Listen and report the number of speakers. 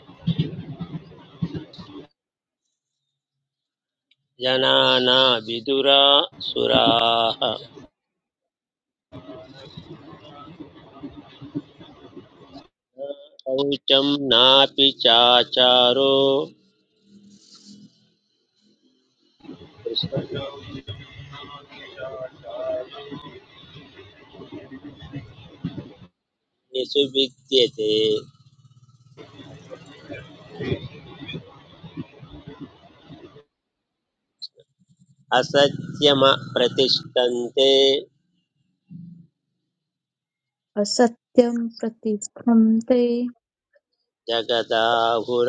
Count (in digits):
2